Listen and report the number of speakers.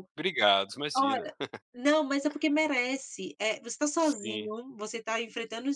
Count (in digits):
2